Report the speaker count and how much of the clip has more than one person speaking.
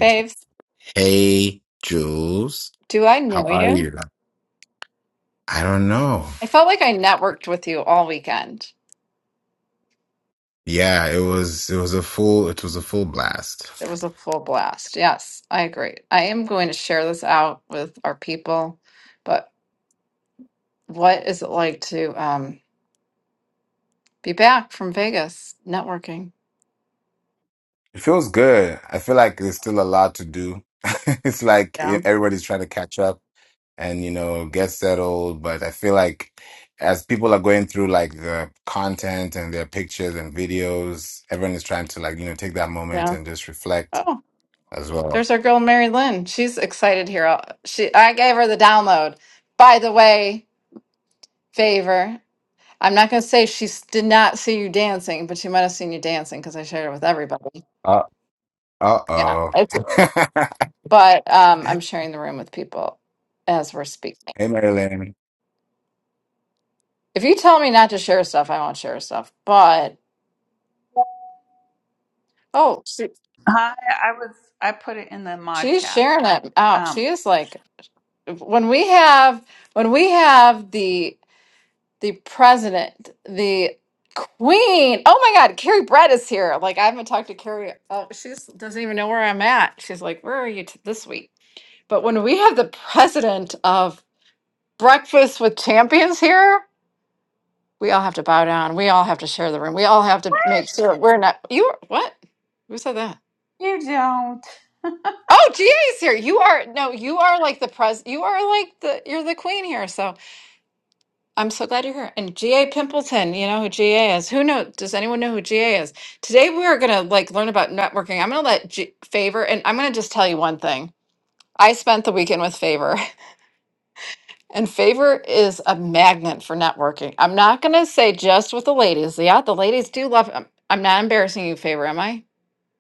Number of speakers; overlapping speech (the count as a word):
three, about 2%